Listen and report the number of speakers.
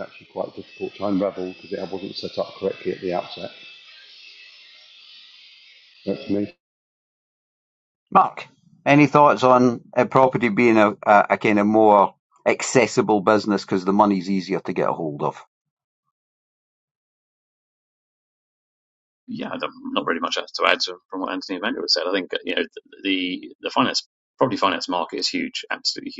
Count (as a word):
three